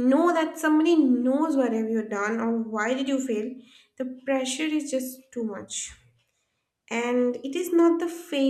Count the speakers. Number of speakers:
one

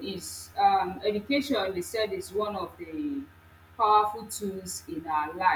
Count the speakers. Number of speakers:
one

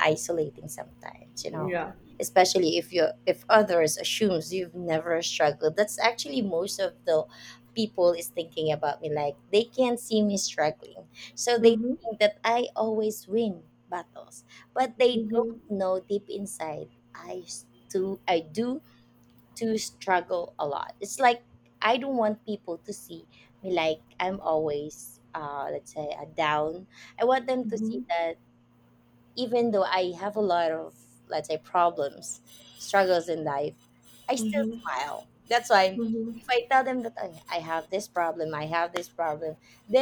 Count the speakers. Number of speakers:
two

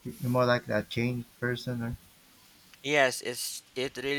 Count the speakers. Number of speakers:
two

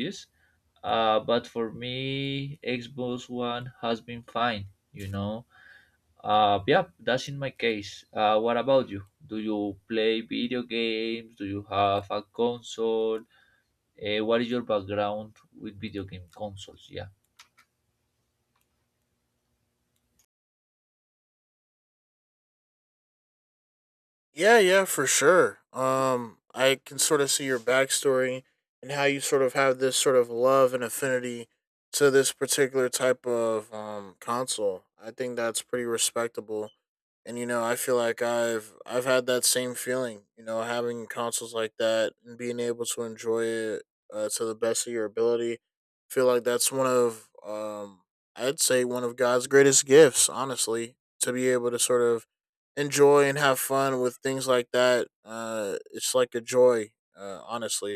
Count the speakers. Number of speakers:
two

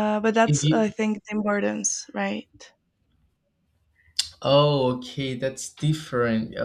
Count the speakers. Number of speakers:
two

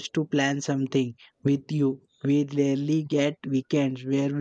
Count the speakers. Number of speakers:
one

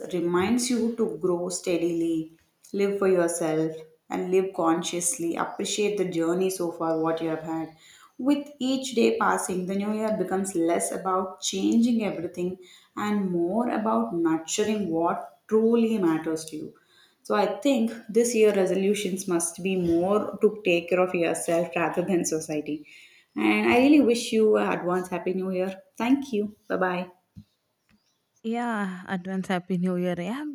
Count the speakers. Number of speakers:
two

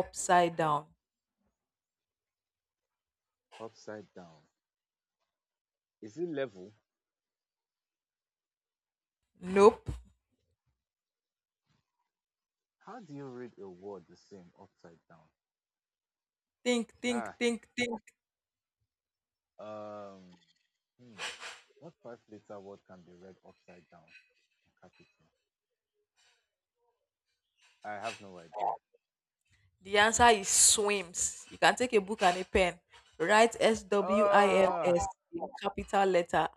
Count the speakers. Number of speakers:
two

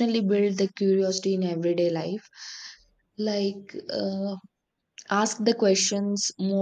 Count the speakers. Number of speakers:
one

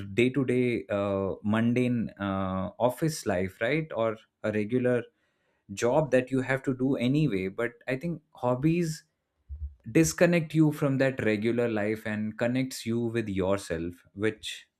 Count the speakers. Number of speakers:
one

